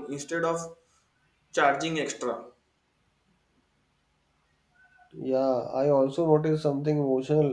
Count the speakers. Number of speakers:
two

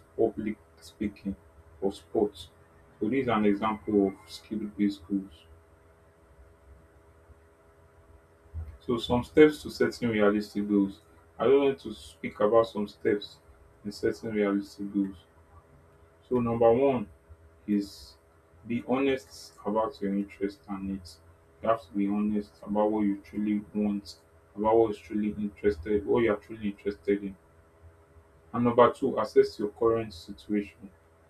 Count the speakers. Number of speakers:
one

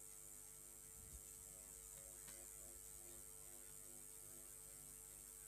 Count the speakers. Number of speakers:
zero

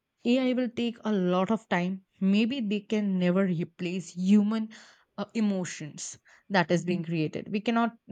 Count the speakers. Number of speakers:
one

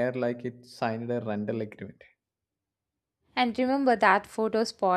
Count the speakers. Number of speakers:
two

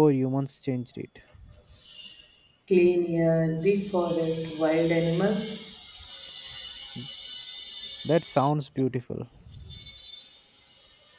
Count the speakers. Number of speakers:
two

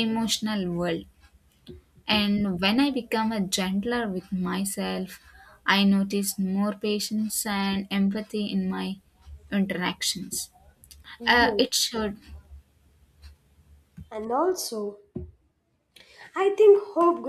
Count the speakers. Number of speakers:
two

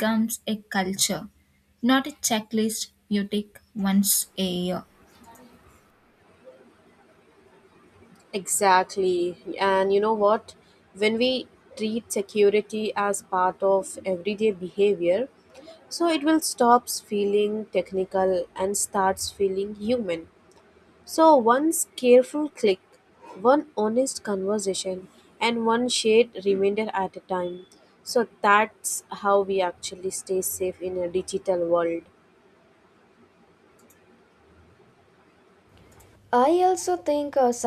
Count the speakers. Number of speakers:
three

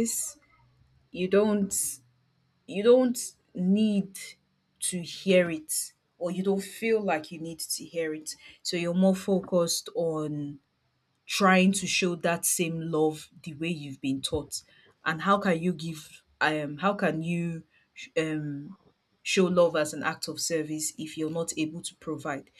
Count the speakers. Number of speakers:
one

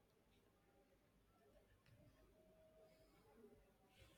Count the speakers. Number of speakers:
zero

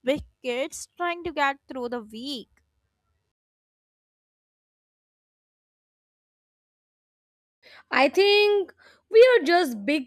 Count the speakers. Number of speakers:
two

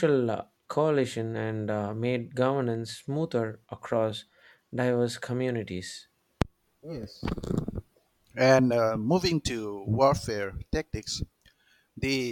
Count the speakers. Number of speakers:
two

